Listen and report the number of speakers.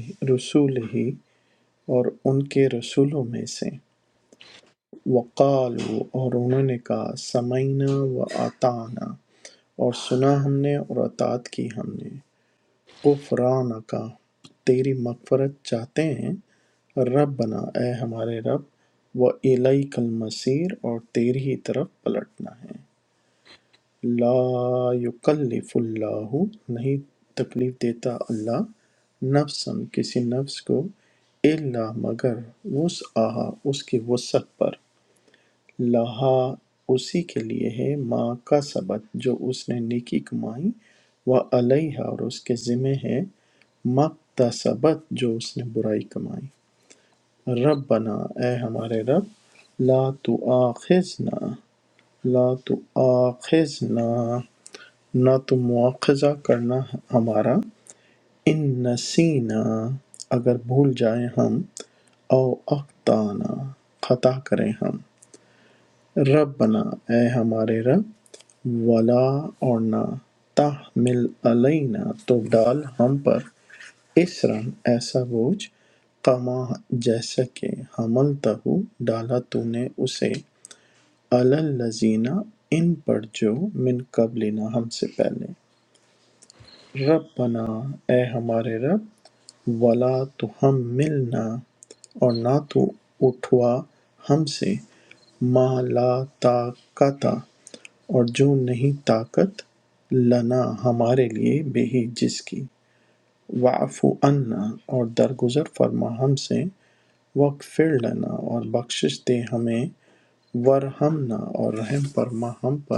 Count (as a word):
one